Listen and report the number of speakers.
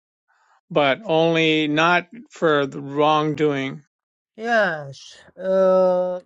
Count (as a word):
two